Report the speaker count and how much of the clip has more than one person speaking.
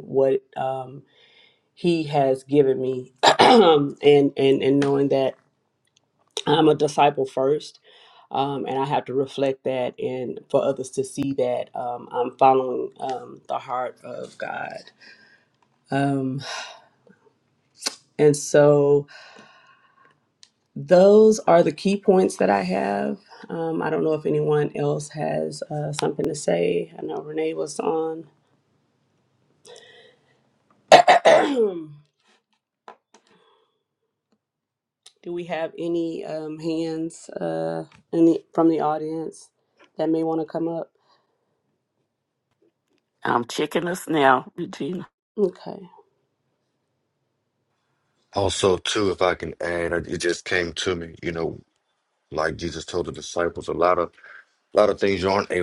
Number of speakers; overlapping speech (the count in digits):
3, no overlap